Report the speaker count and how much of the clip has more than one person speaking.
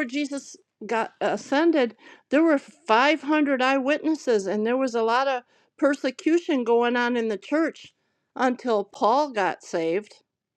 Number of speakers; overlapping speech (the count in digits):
1, no overlap